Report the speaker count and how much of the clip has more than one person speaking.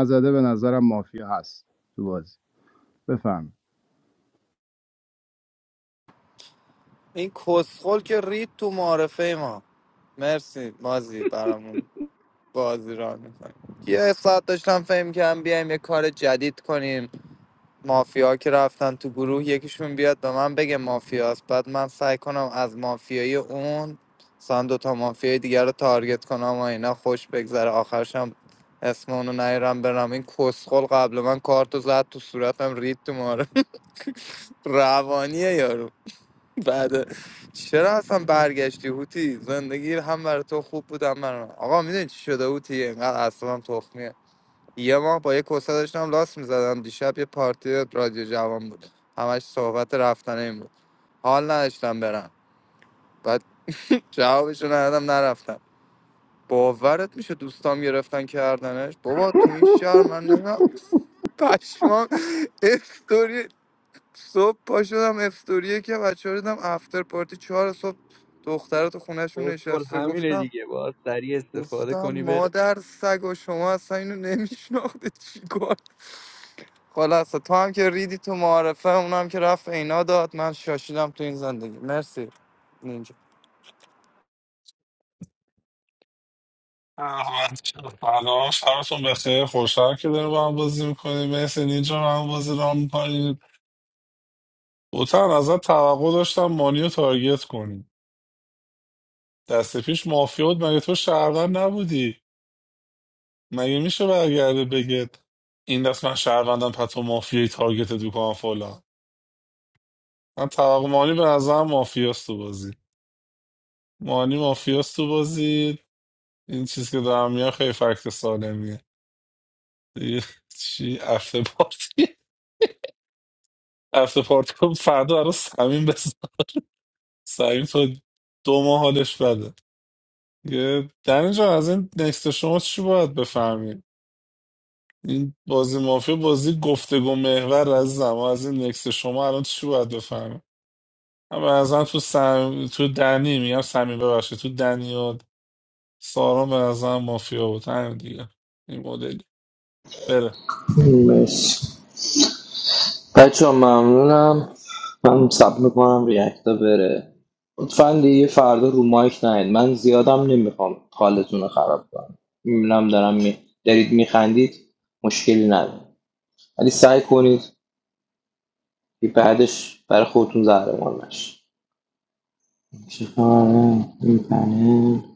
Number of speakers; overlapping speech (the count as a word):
five, about 1%